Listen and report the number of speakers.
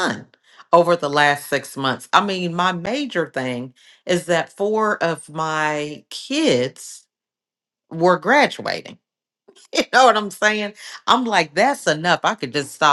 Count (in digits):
1